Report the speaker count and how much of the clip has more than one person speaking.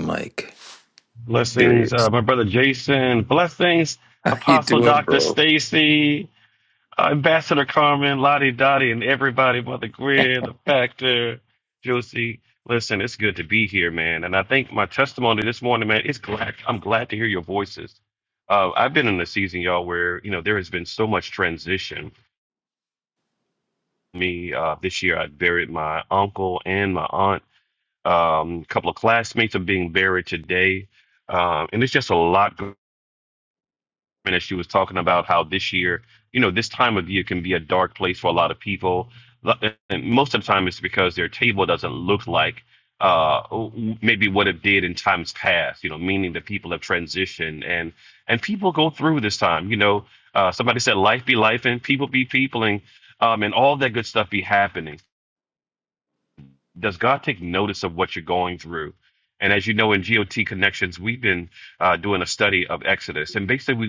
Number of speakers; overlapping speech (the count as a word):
two, about 2%